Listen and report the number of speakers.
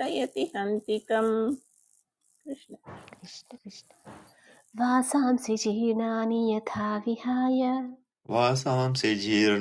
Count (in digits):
3